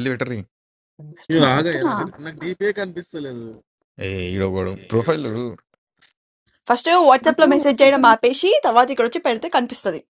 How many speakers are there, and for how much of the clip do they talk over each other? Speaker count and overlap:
three, about 16%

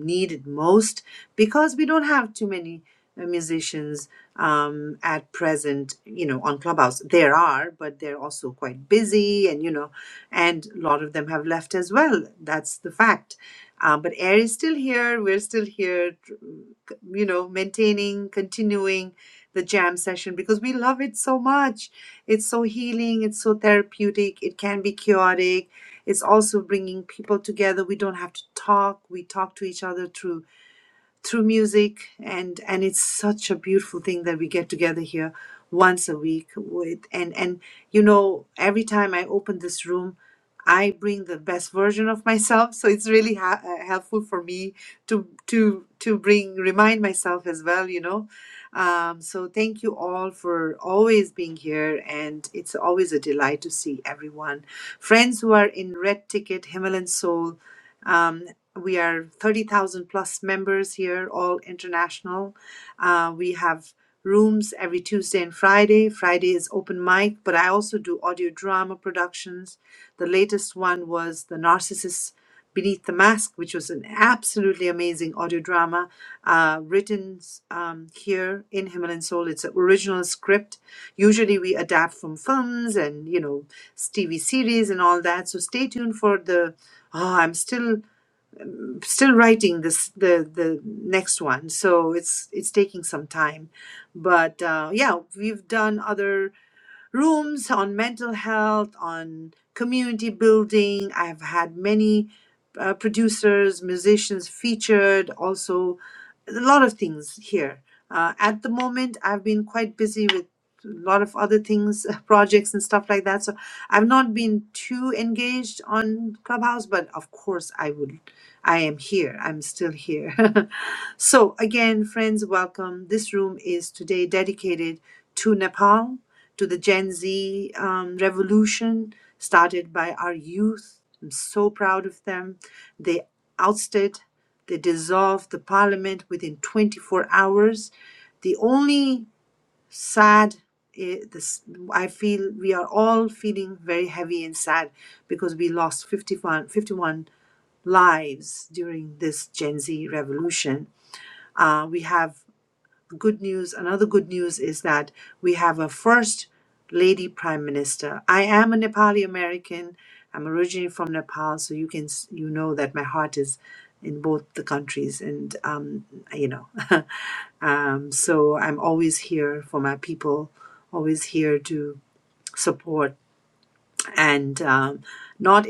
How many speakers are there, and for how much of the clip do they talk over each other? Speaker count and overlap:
one, no overlap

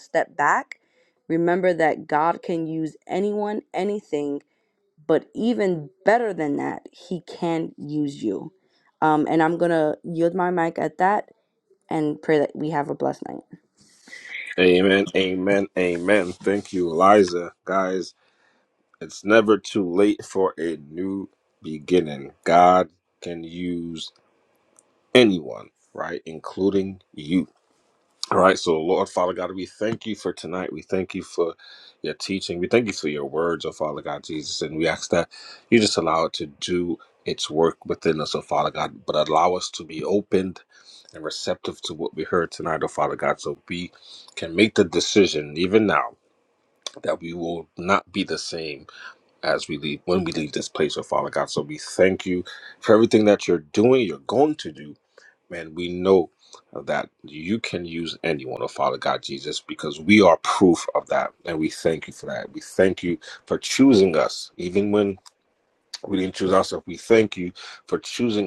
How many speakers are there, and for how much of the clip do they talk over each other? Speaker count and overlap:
two, no overlap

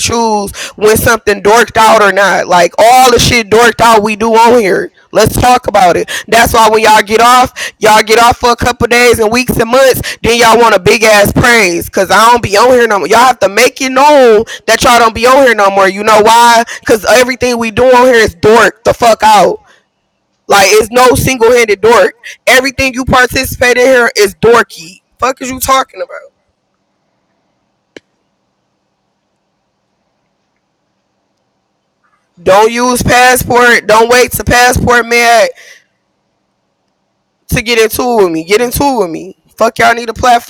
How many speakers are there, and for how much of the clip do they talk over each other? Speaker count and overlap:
one, no overlap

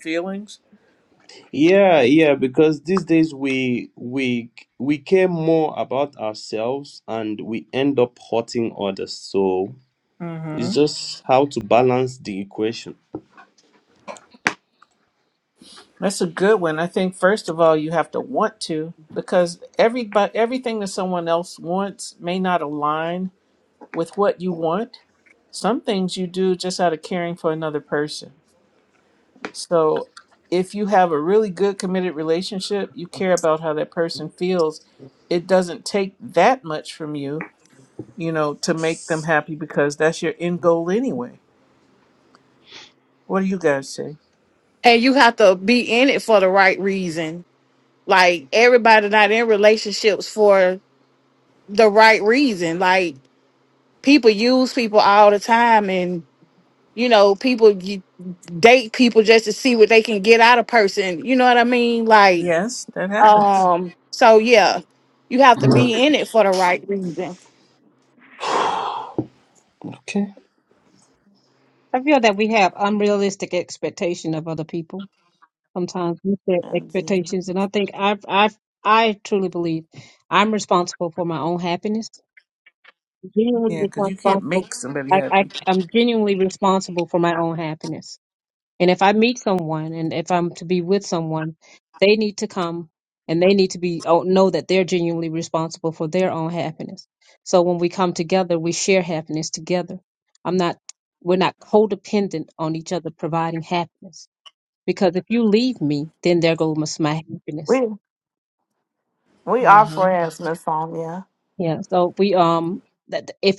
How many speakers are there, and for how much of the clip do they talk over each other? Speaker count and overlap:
five, about 3%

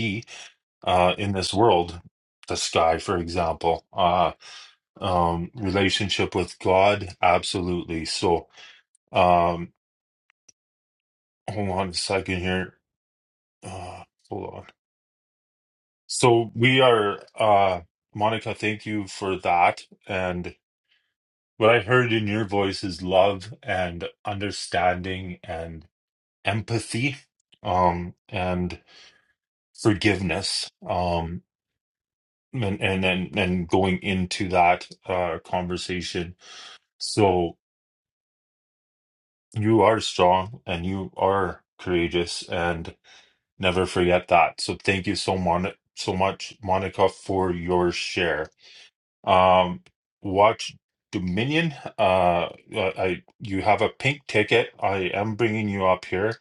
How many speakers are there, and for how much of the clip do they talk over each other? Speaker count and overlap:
one, no overlap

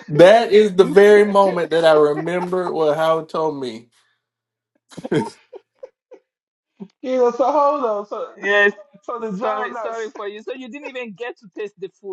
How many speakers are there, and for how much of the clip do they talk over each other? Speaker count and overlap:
three, about 13%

